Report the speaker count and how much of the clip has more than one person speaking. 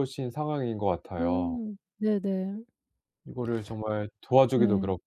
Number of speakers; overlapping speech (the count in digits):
2, about 16%